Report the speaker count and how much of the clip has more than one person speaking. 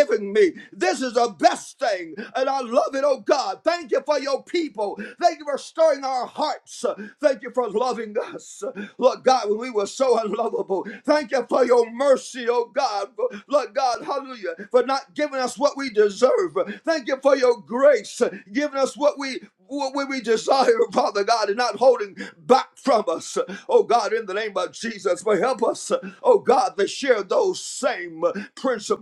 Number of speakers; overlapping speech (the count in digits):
1, no overlap